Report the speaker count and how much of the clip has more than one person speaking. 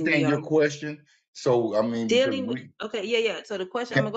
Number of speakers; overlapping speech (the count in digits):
2, about 28%